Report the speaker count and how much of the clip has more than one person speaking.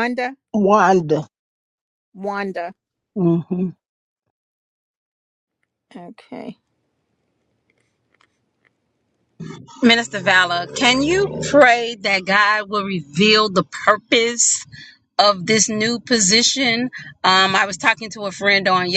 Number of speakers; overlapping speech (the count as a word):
three, no overlap